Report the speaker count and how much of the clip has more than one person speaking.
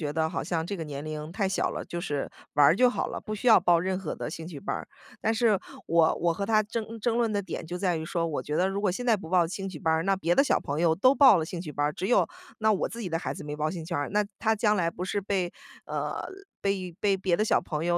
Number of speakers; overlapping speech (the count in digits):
1, no overlap